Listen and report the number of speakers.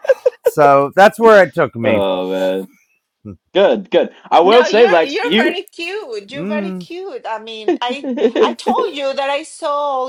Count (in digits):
3